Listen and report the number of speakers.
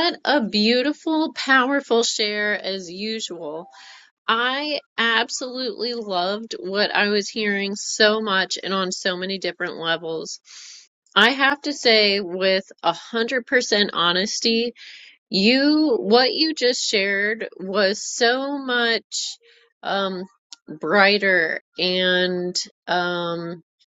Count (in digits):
1